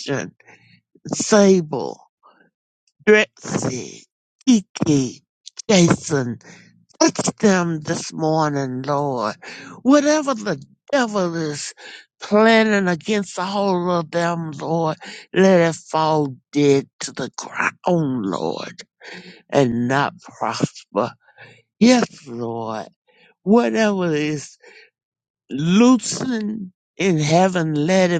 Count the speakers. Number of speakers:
one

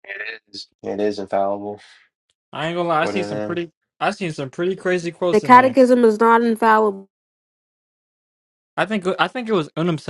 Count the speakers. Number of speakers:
three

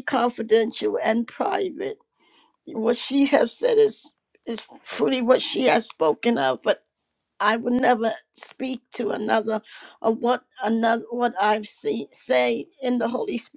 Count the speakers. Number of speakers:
one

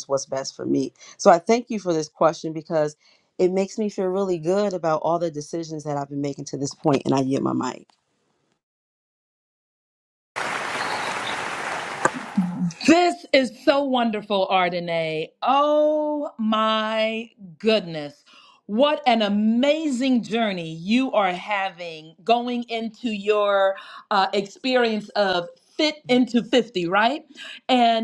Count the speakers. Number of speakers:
two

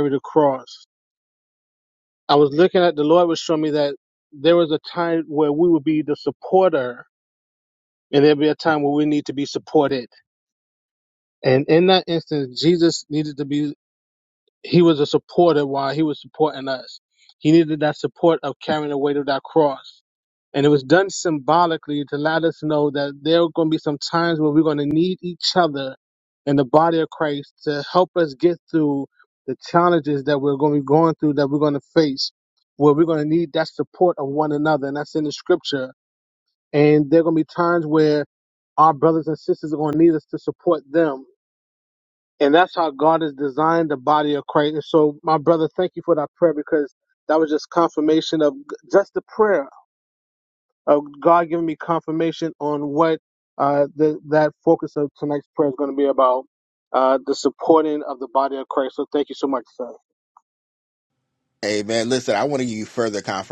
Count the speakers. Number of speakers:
two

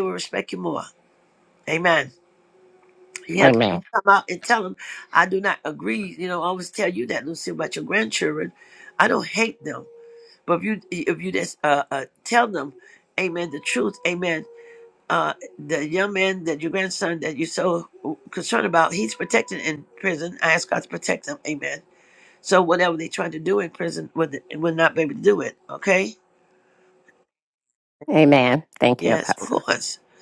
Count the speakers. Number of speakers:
two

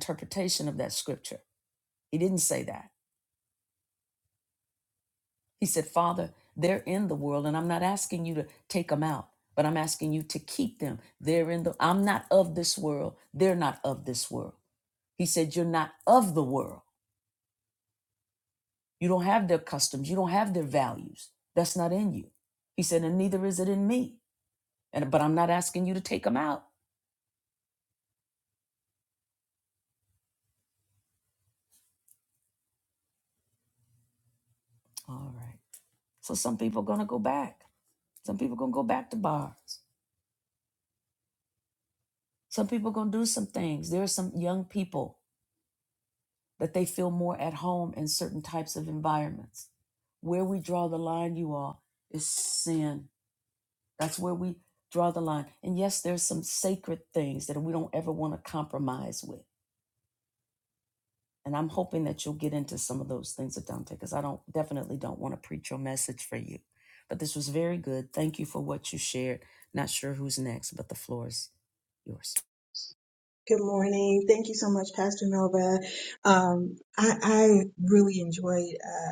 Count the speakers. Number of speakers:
two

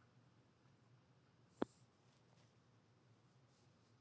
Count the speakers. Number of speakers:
zero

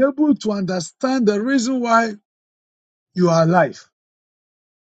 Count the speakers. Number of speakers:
one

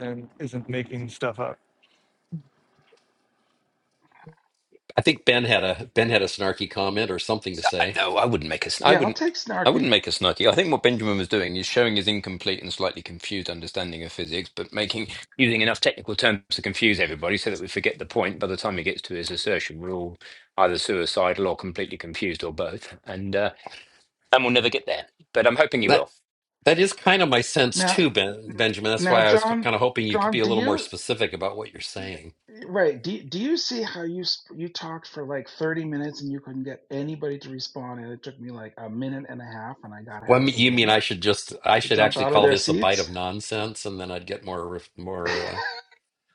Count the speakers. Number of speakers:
four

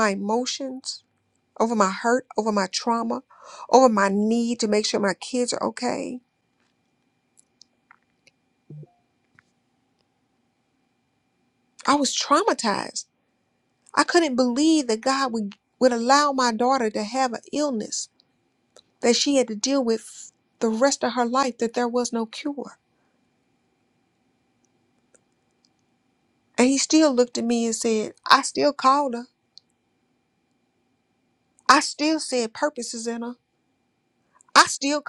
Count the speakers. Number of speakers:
one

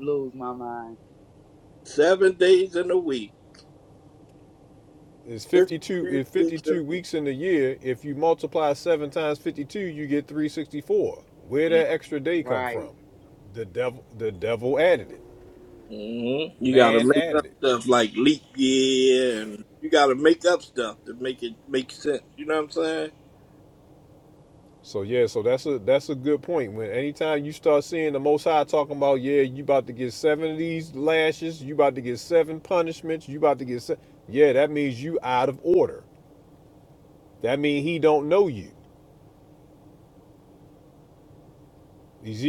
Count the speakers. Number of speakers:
three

